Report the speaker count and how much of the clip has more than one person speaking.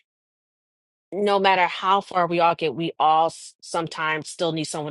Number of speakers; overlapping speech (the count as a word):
one, no overlap